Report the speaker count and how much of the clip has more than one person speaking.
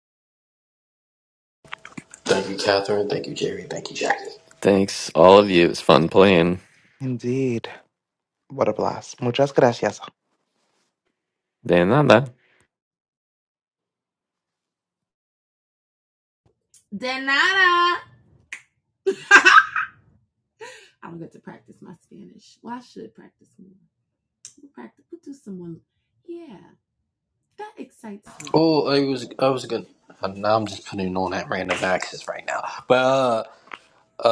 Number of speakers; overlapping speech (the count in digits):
4, under 1%